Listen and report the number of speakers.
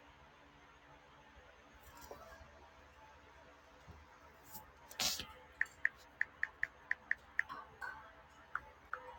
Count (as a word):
zero